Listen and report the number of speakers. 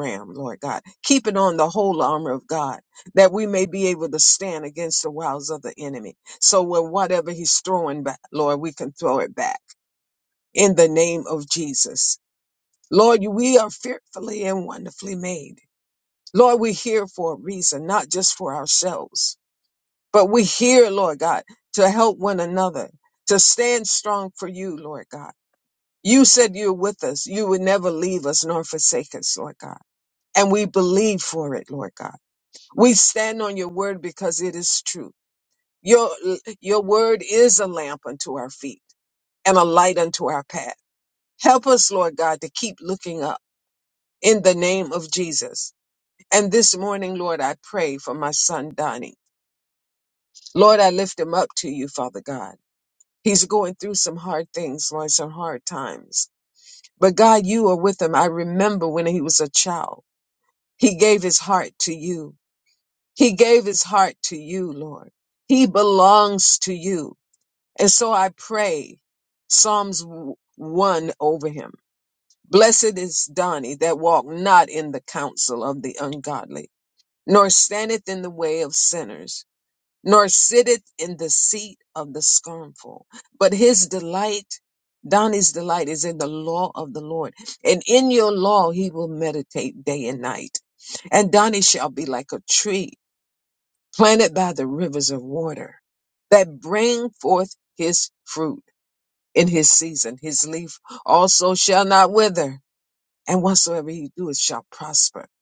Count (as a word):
one